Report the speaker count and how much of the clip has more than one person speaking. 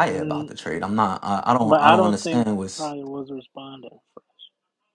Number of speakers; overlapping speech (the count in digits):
2, about 25%